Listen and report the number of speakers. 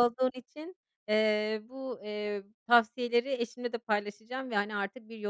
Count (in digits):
1